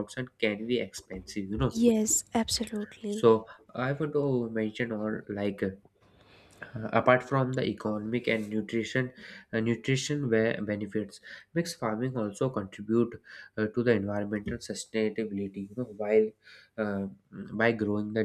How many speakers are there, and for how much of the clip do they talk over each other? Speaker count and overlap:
2, about 1%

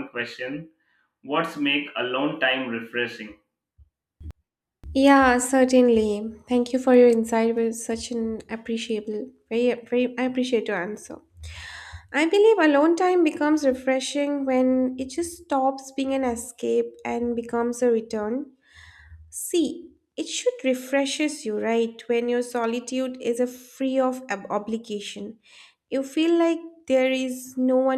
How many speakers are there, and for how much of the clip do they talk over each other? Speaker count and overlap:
2, no overlap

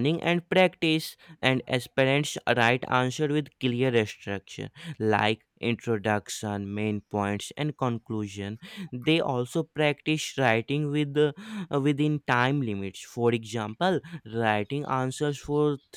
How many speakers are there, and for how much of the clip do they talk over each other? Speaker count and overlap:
1, no overlap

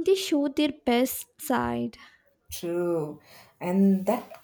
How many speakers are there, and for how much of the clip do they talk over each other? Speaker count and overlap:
2, no overlap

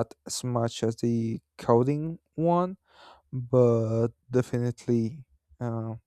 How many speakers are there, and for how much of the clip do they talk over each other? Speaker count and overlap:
1, no overlap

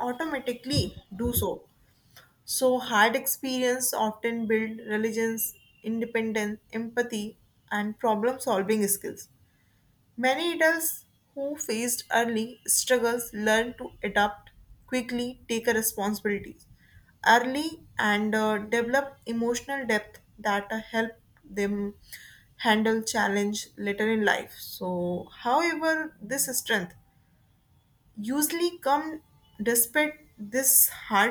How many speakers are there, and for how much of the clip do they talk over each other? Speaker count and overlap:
1, no overlap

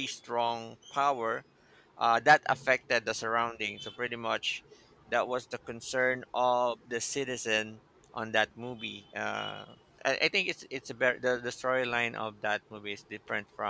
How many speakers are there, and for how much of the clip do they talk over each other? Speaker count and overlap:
1, no overlap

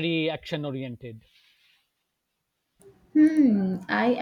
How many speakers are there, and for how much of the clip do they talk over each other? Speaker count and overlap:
2, no overlap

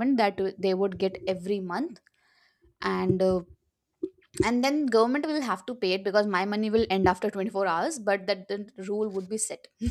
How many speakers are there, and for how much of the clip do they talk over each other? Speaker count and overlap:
1, no overlap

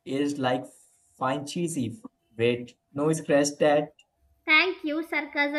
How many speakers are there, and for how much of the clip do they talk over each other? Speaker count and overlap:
2, no overlap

